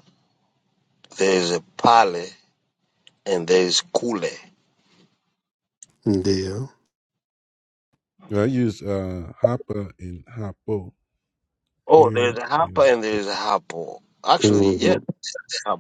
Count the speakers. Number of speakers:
three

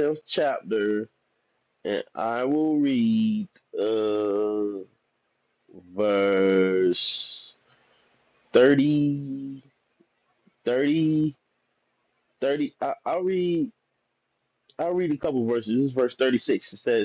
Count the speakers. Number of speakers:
one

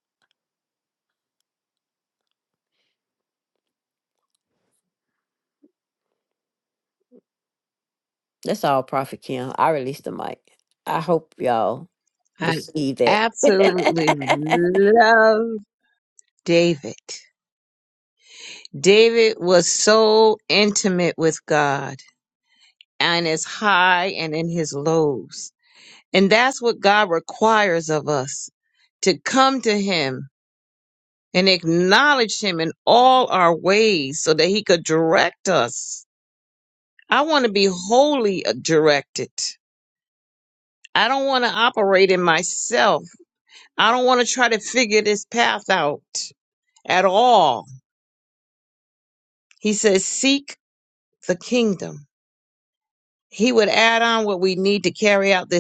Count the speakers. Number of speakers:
two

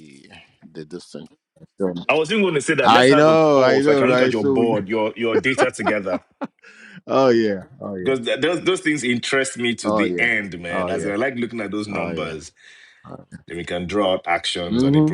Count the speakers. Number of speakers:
two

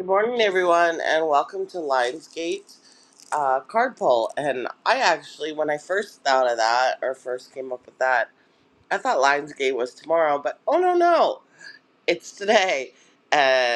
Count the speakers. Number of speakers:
one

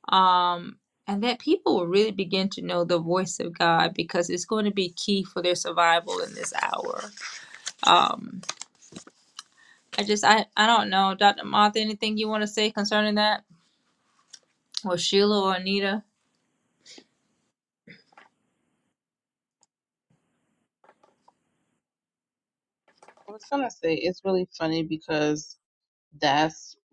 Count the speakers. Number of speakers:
two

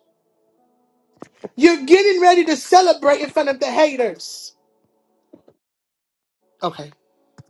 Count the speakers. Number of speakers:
one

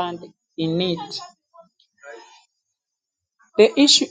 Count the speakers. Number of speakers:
one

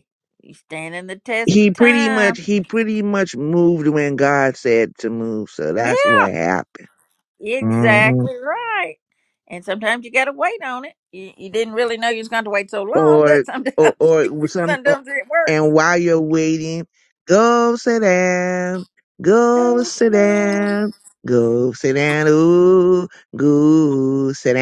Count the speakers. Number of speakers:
two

